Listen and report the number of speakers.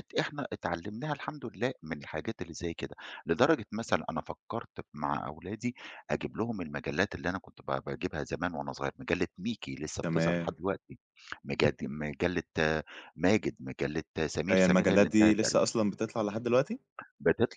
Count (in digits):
2